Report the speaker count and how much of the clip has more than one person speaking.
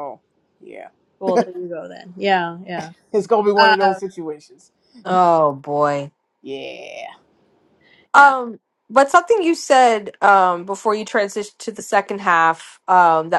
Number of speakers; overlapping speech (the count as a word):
three, about 5%